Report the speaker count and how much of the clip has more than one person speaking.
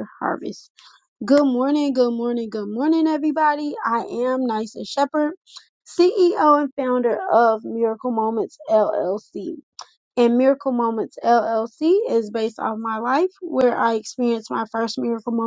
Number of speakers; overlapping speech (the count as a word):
one, no overlap